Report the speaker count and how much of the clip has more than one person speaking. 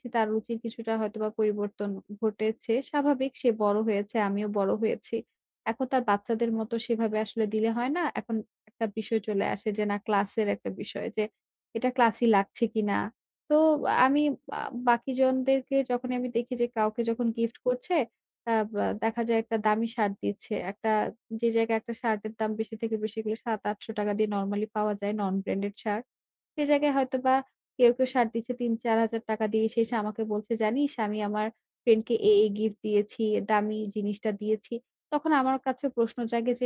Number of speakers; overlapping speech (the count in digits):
1, no overlap